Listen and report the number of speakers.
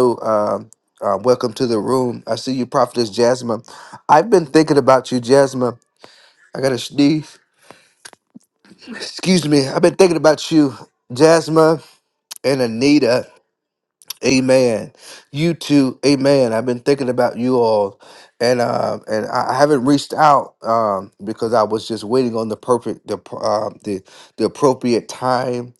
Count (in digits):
1